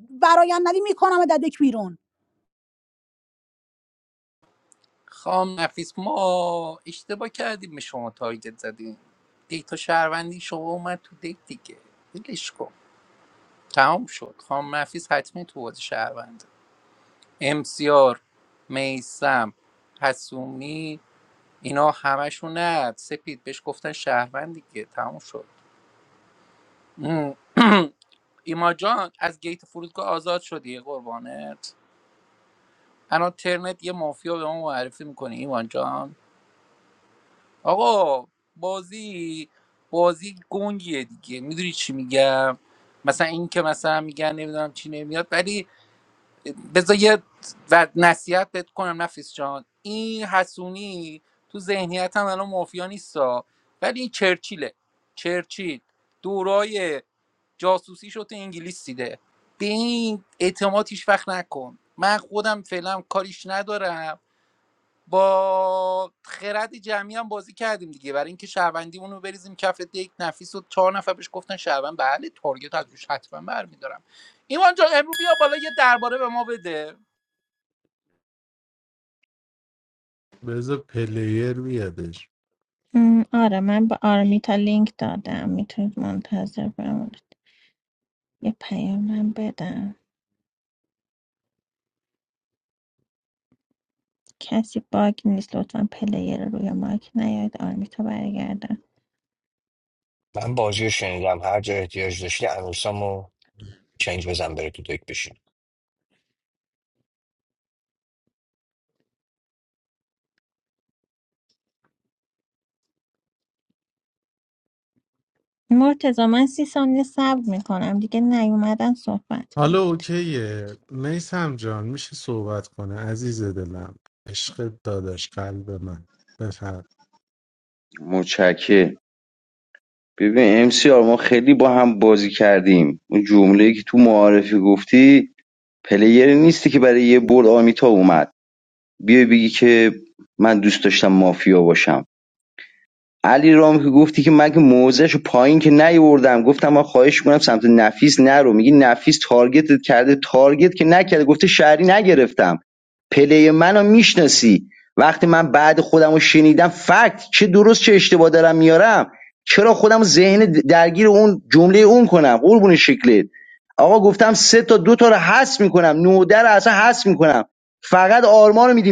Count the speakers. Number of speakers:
six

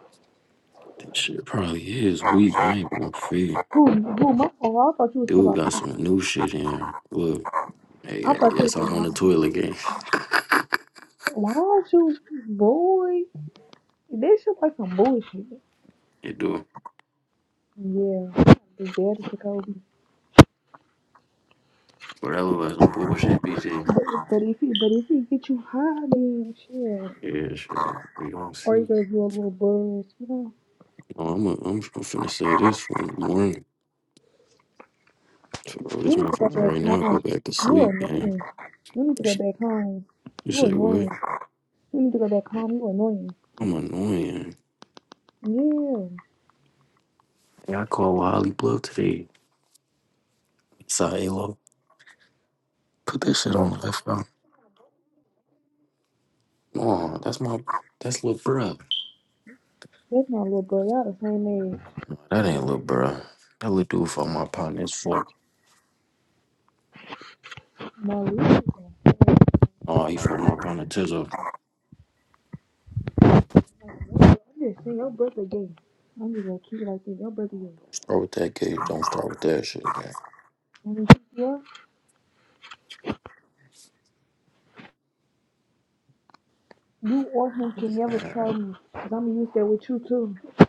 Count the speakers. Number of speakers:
two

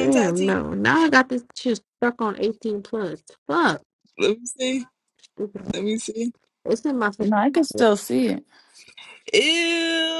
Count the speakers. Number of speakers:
three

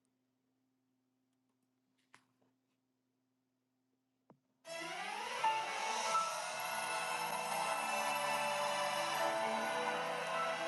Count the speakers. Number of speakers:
zero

